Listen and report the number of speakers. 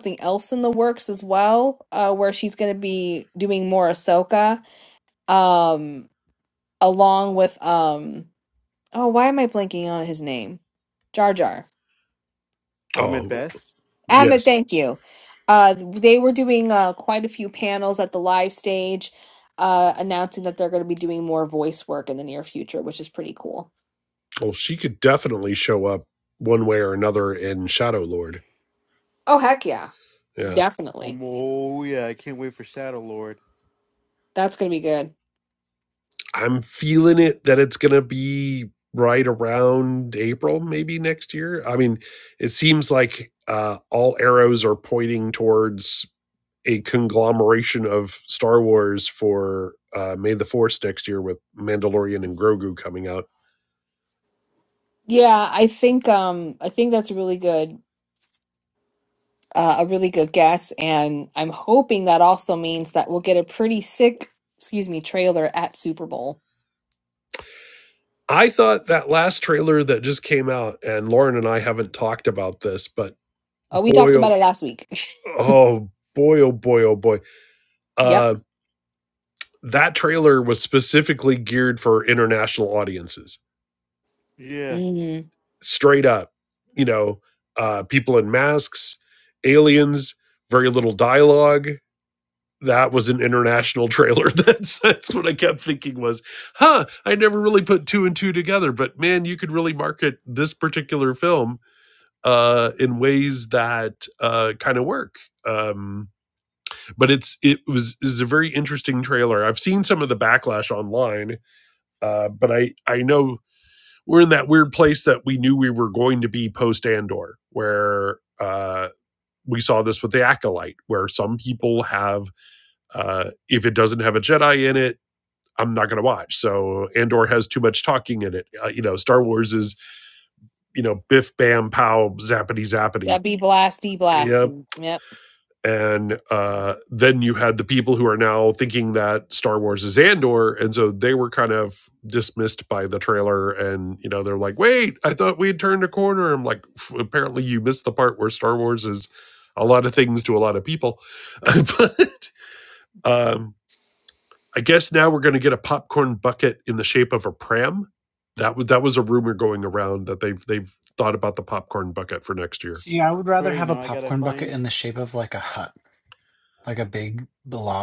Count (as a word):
four